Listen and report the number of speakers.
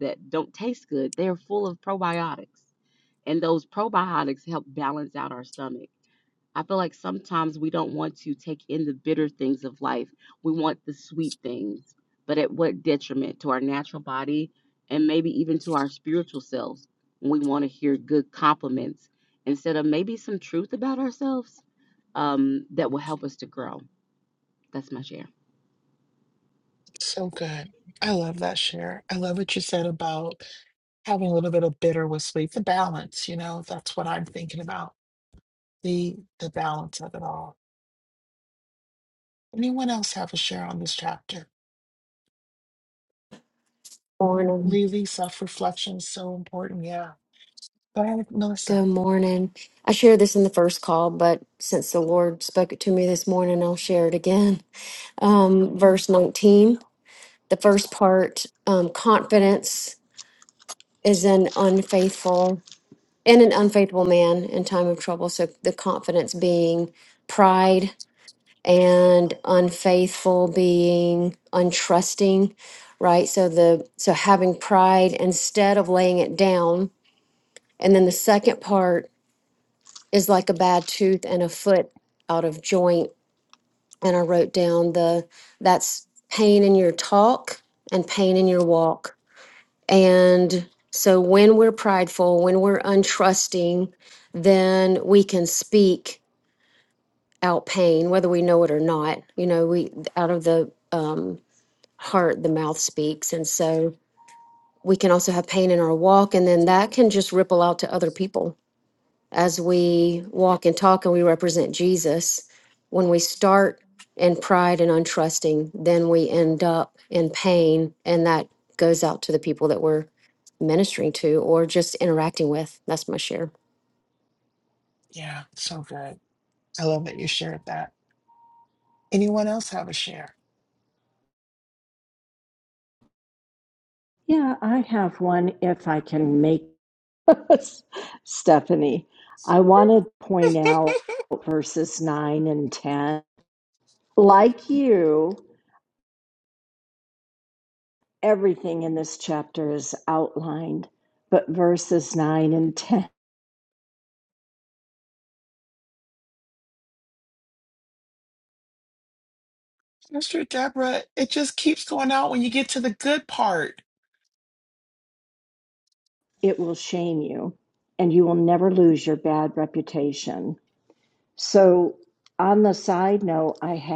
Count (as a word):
four